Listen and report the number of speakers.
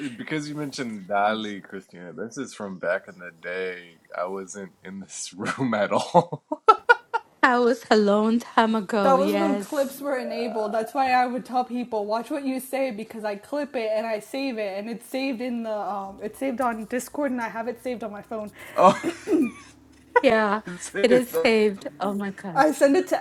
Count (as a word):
three